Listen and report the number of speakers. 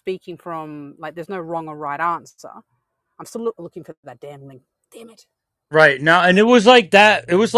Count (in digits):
2